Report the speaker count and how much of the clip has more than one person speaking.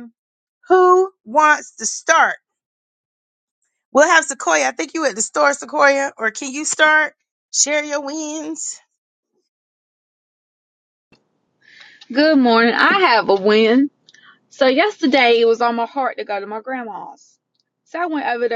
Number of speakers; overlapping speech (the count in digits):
2, no overlap